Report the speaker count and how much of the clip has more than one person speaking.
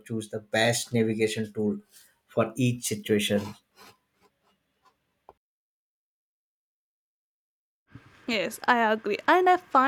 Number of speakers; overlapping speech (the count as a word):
two, no overlap